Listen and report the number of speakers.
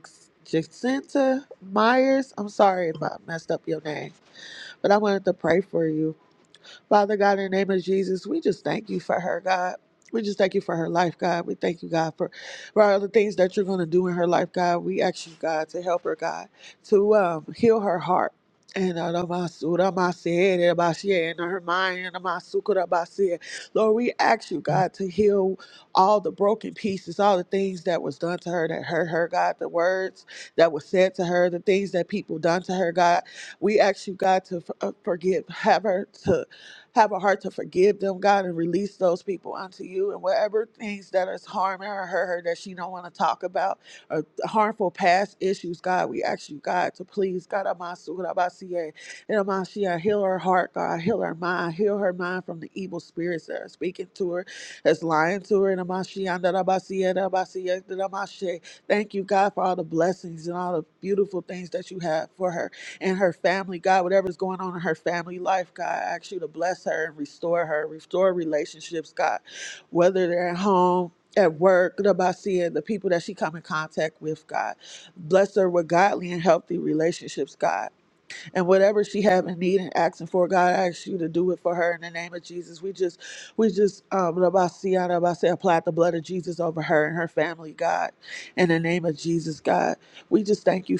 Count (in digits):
1